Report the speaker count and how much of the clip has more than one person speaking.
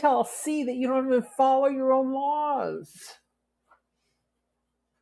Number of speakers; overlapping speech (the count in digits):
1, no overlap